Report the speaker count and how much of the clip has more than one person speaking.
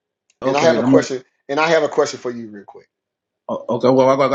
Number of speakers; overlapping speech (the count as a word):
two, about 14%